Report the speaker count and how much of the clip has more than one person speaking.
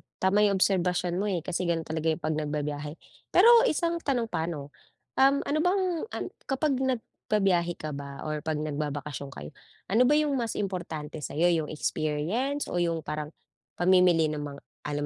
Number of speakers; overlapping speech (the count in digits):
1, no overlap